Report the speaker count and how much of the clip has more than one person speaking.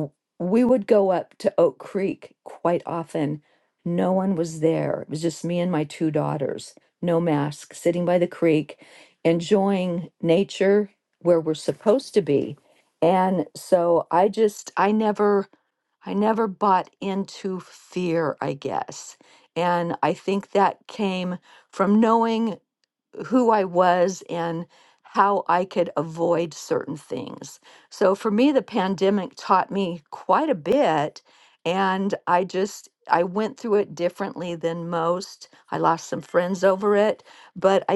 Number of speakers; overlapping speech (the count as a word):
one, no overlap